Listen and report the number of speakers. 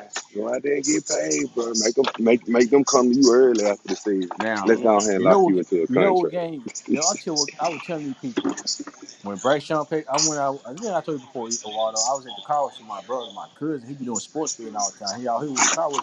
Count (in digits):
2